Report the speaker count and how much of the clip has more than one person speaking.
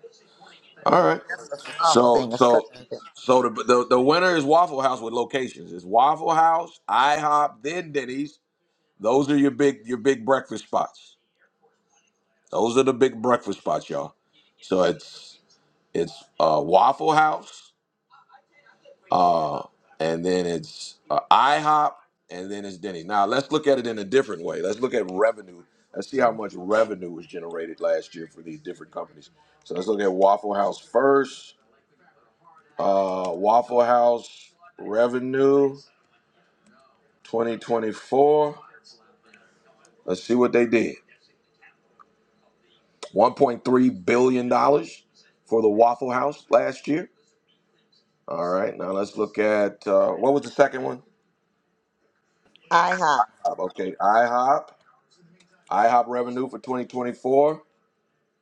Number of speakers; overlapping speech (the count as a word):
two, about 2%